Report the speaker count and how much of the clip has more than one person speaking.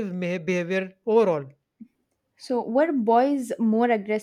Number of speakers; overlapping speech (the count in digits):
2, no overlap